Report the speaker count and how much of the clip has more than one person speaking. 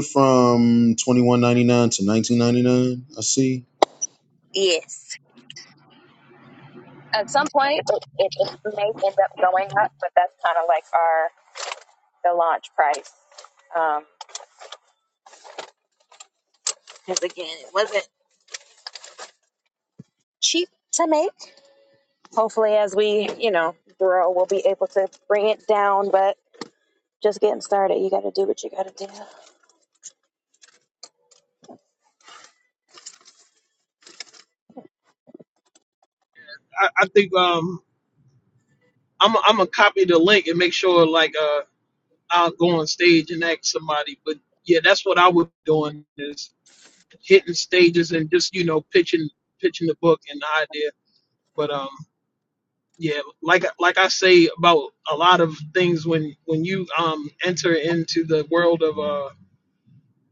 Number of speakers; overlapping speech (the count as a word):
three, no overlap